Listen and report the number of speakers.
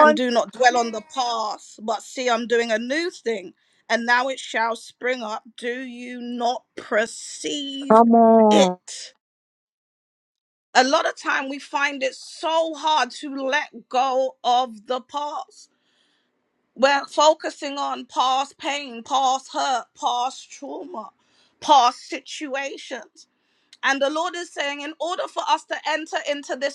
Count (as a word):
two